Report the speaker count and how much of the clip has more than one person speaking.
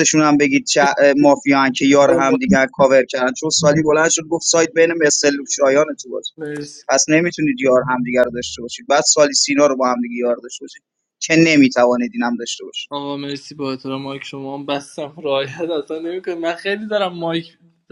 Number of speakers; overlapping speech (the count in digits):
2, about 2%